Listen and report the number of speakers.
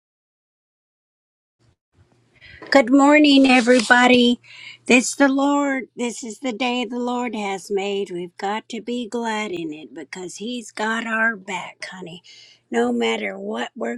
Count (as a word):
one